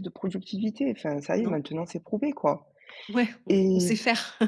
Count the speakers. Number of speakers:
2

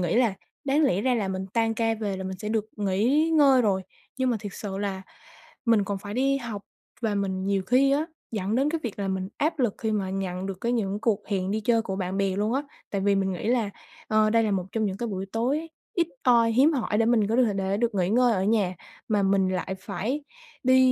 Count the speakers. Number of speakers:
1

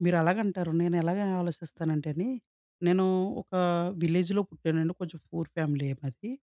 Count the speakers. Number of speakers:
1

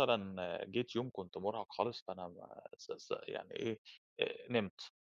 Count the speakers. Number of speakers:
1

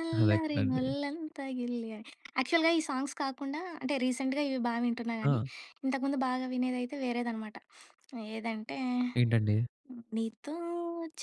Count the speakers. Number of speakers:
2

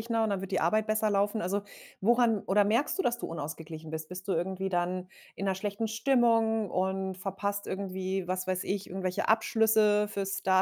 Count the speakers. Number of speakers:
1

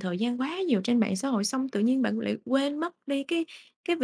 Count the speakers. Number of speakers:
1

